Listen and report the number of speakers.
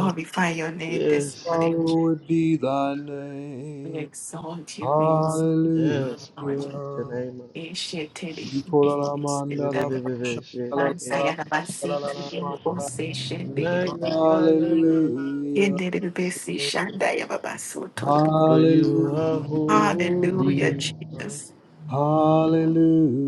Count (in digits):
3